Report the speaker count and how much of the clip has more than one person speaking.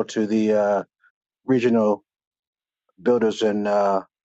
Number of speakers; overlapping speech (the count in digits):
1, no overlap